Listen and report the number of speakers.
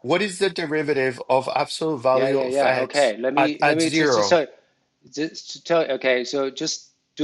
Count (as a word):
two